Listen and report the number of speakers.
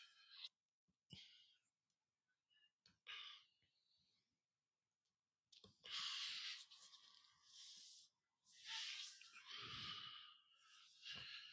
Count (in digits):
0